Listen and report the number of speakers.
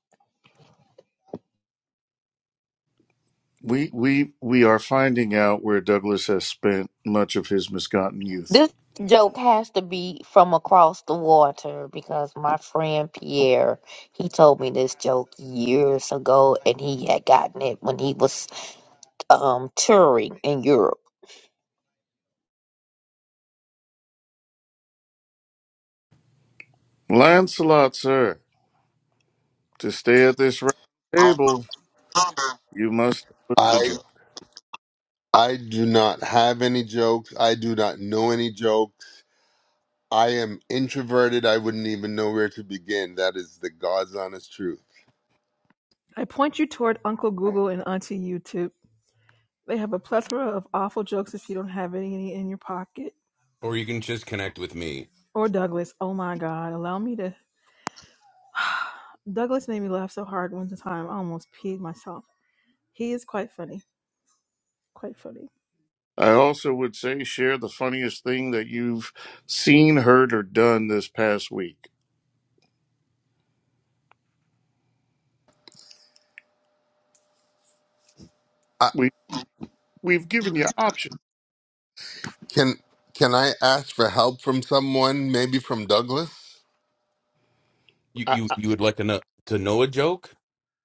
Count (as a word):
five